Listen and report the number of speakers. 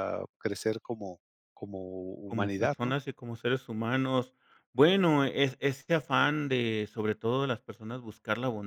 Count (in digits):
2